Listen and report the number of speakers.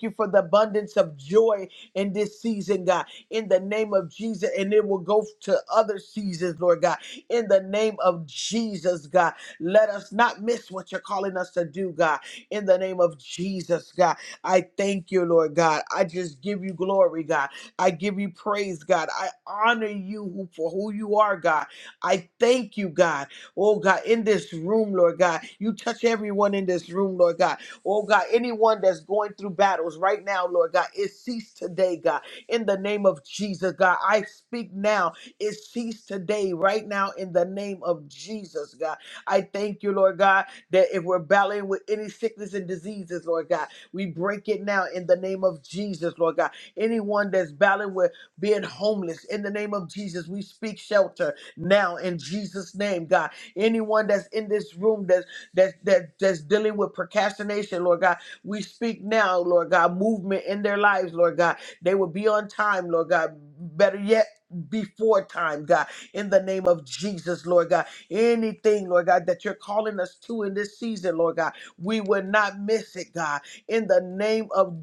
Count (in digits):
1